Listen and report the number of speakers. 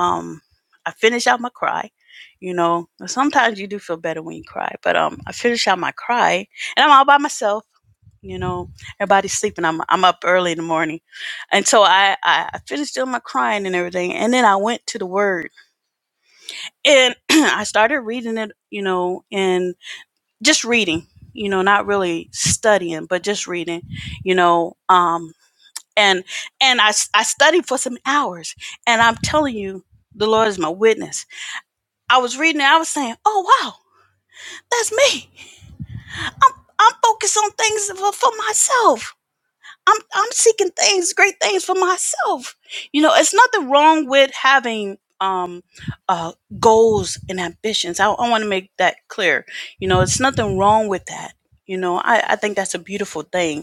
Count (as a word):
one